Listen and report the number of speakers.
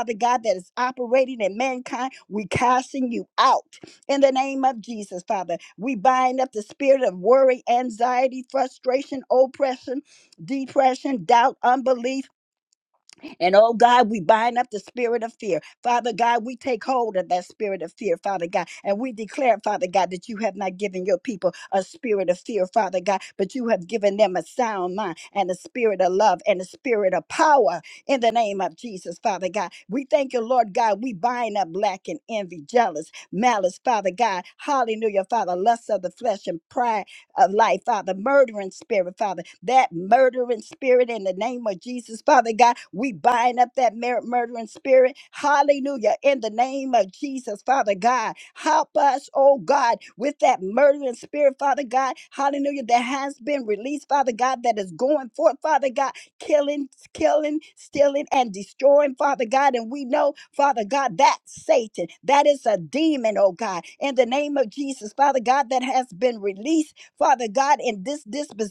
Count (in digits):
1